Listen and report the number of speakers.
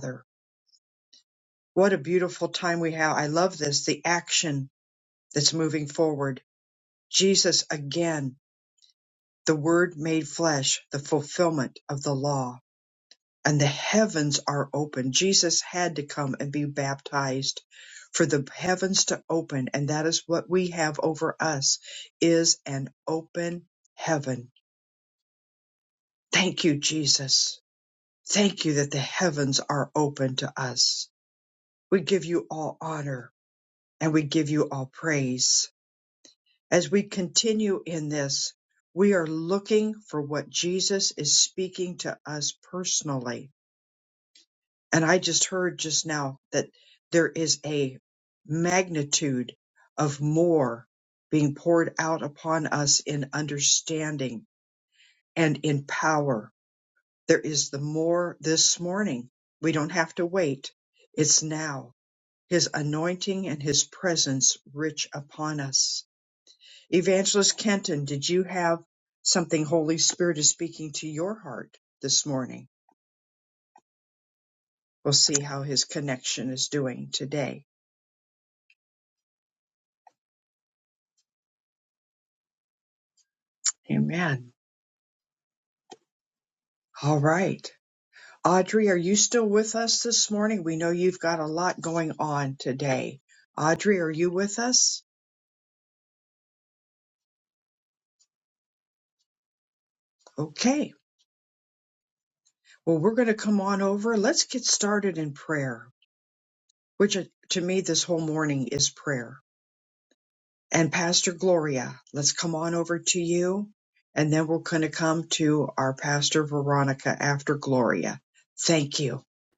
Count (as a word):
one